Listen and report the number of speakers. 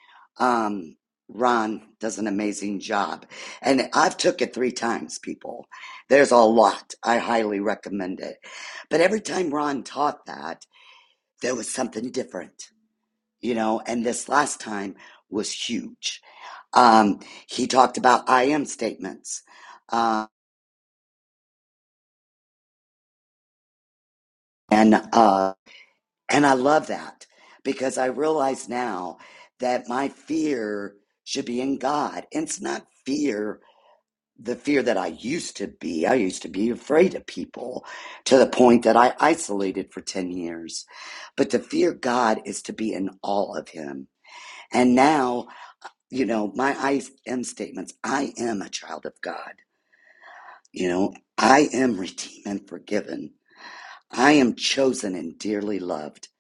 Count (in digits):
1